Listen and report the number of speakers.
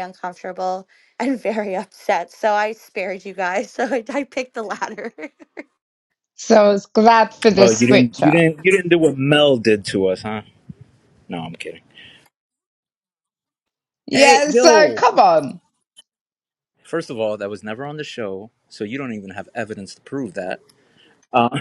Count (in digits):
3